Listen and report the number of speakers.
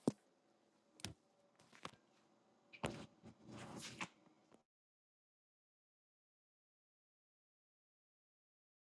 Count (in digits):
0